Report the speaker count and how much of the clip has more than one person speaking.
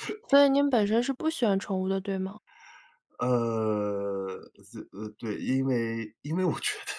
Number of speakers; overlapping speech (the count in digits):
2, no overlap